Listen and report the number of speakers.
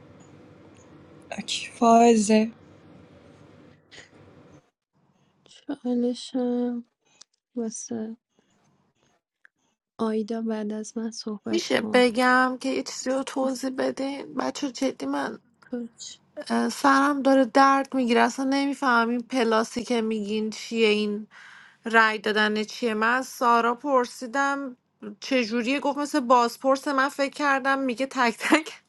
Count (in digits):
3